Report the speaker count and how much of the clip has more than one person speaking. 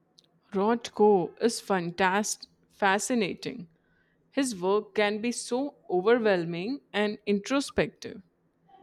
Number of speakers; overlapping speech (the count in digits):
1, no overlap